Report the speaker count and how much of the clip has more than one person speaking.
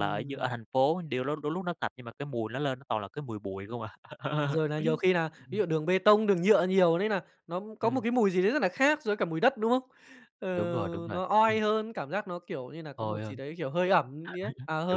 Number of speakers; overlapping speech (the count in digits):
2, about 11%